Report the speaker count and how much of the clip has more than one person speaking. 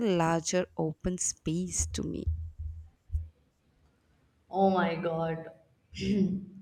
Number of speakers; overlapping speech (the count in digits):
2, no overlap